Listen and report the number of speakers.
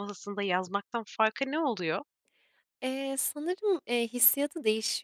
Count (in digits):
2